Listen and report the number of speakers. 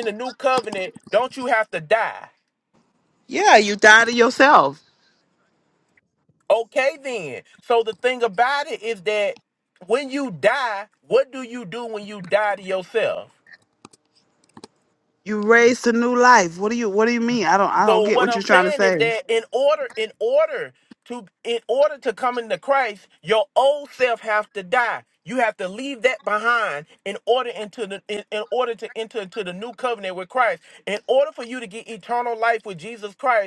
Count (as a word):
two